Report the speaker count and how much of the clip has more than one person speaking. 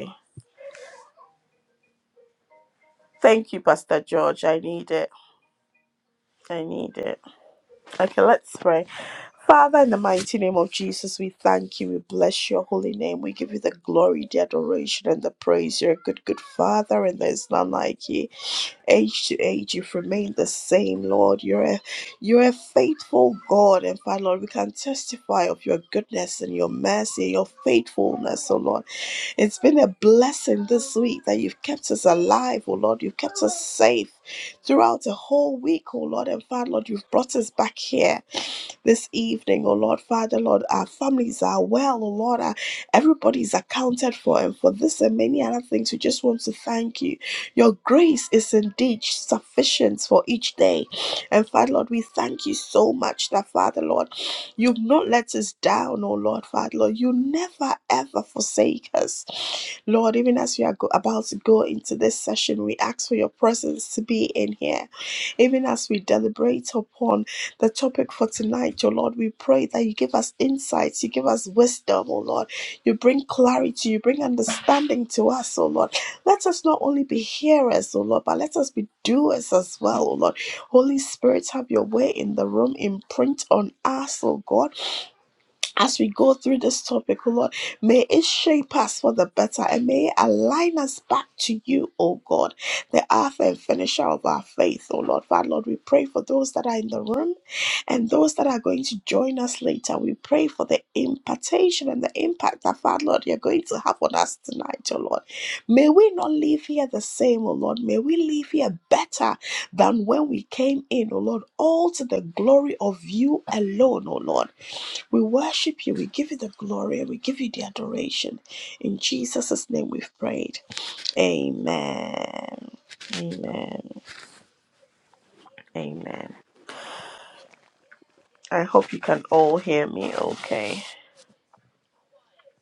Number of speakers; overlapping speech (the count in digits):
1, no overlap